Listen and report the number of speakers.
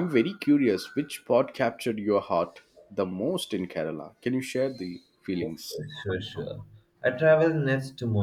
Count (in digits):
2